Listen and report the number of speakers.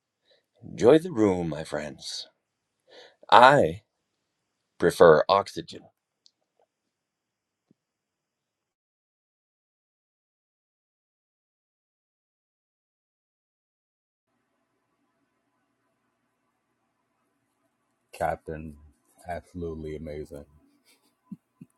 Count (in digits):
2